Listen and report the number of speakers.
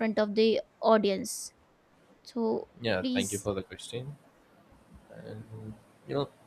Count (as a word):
two